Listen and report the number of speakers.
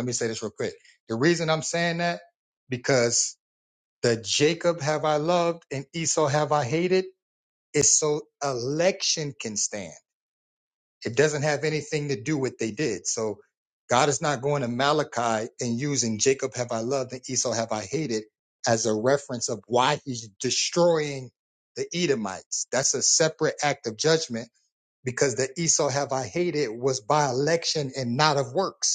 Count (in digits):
1